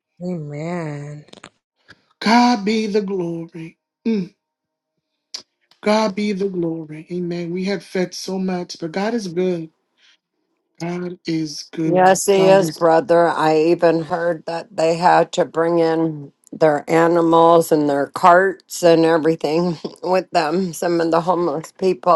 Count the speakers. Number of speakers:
3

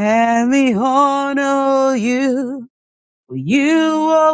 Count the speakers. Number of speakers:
1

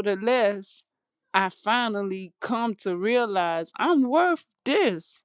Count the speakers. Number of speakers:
1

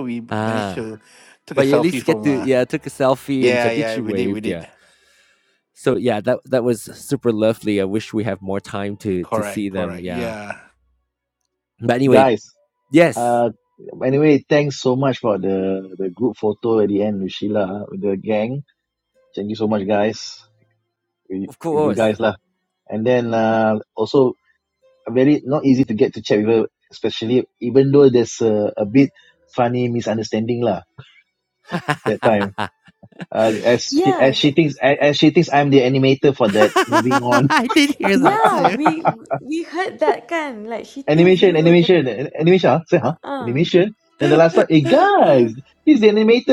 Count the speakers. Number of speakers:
4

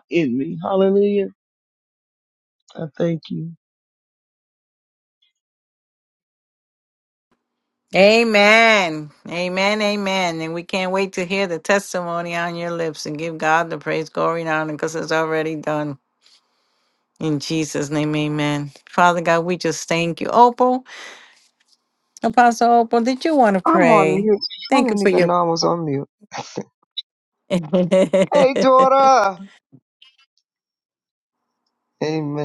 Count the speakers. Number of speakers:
3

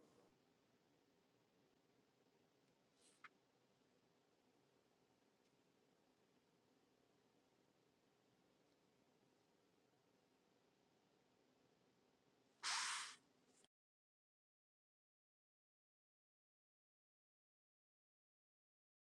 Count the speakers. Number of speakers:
0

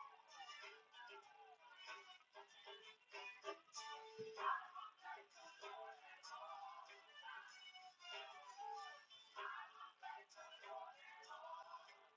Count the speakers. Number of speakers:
0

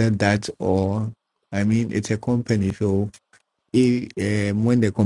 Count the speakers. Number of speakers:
1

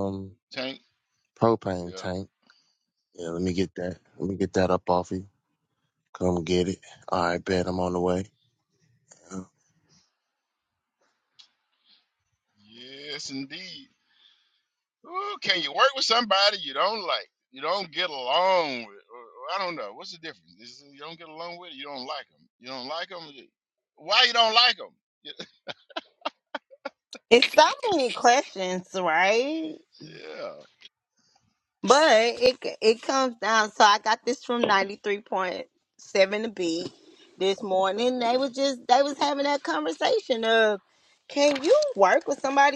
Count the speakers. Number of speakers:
3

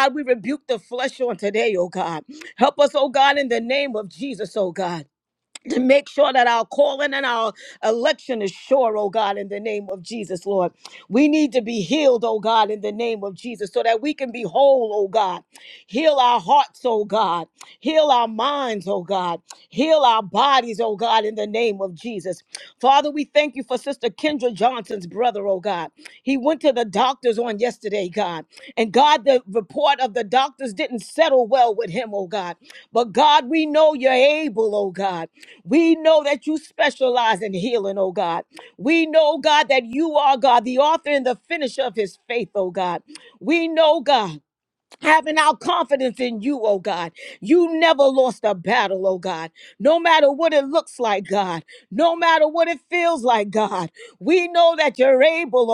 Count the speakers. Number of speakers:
1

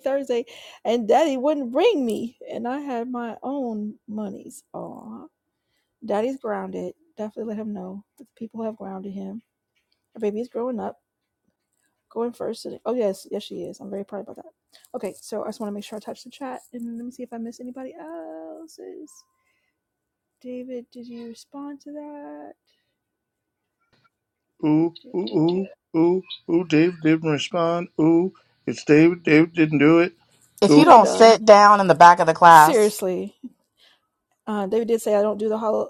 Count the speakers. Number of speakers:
3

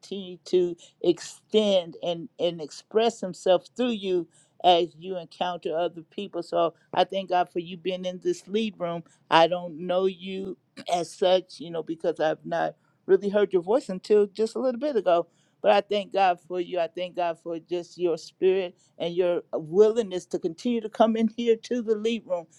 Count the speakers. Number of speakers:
1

